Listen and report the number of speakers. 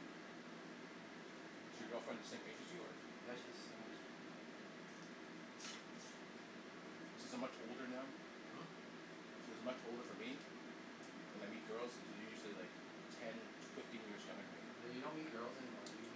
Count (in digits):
2